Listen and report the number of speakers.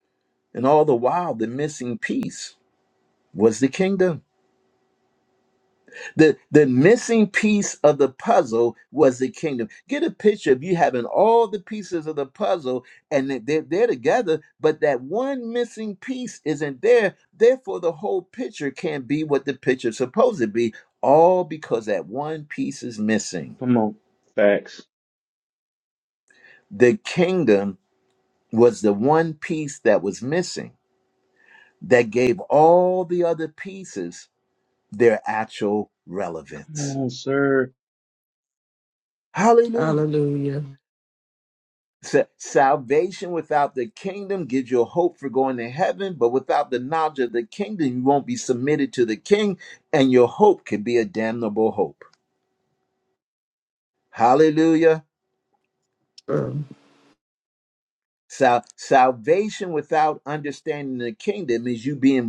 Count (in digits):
3